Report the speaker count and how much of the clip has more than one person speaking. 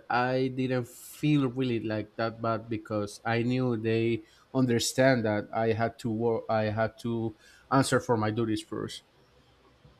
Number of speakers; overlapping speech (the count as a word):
one, no overlap